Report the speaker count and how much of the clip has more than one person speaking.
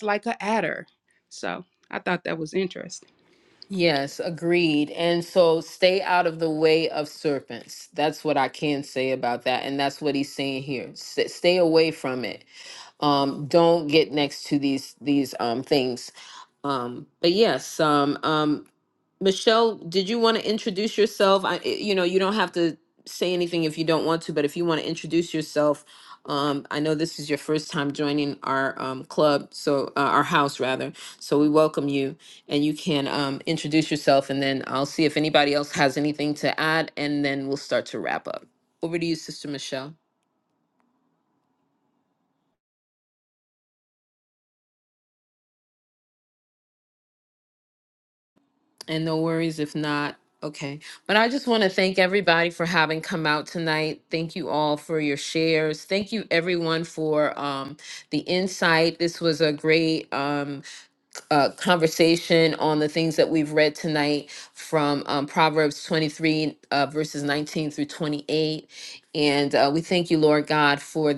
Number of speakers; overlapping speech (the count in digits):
2, no overlap